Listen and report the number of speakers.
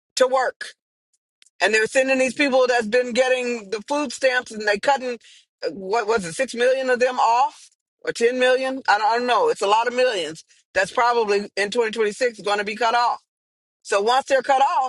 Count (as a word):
one